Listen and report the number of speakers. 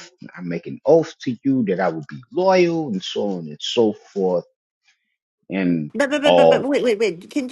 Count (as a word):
two